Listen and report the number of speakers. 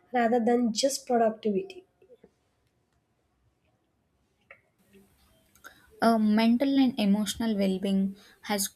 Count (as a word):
two